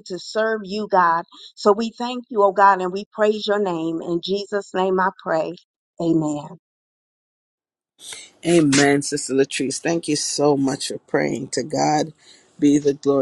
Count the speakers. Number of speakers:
2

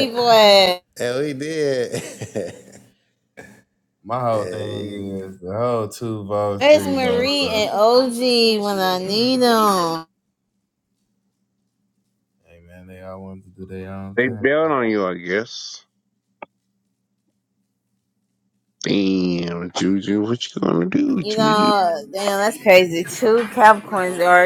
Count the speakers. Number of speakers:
4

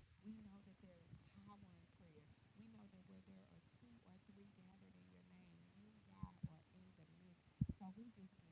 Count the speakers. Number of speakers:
0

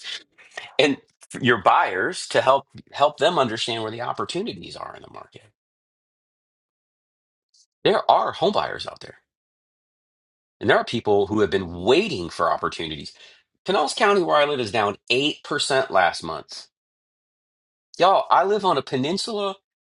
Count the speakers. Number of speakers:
1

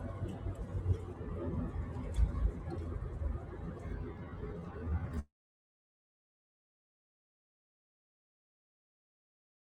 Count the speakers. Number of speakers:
0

